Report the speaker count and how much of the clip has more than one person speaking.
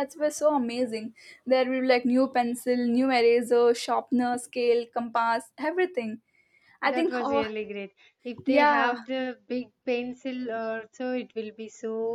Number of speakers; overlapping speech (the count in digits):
2, about 10%